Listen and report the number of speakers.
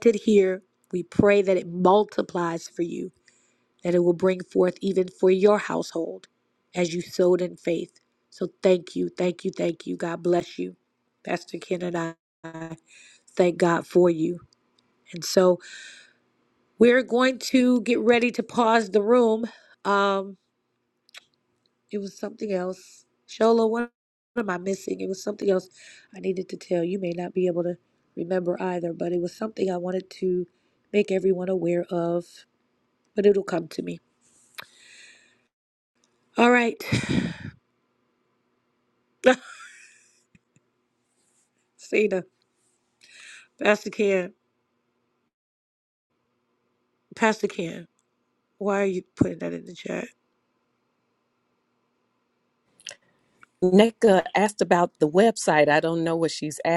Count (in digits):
2